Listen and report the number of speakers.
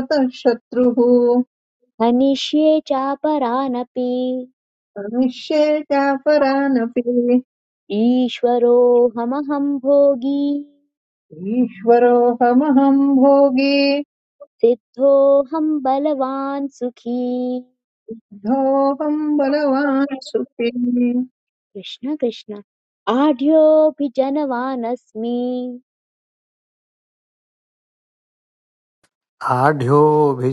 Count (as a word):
three